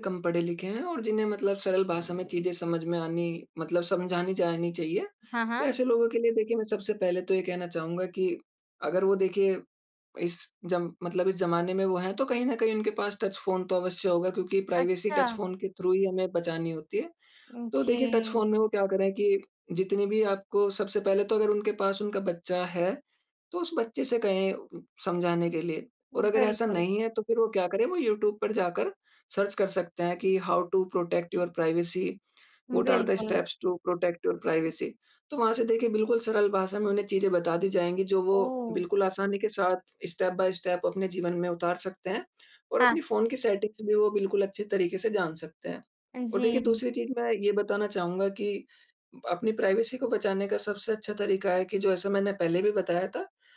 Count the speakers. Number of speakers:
2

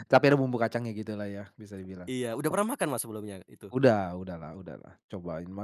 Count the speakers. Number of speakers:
2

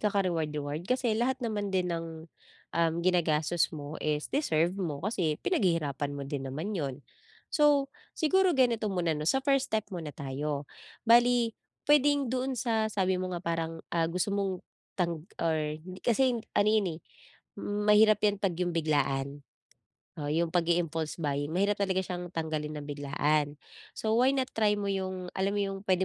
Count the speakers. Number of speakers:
1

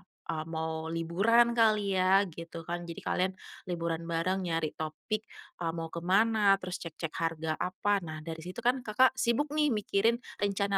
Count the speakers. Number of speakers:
1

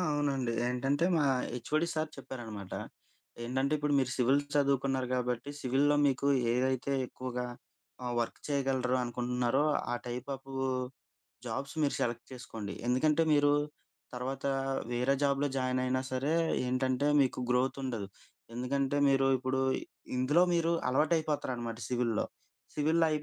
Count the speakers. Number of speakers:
1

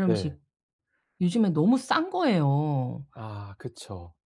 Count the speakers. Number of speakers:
2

